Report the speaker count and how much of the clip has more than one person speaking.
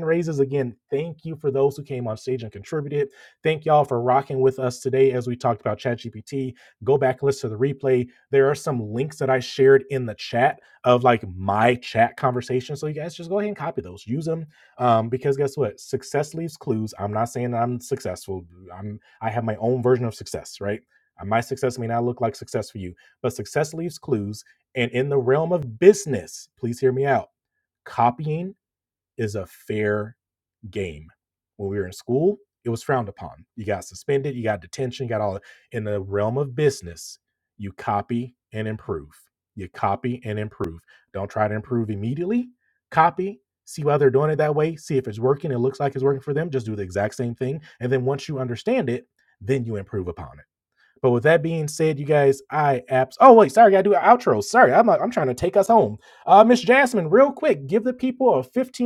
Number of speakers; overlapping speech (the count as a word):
one, no overlap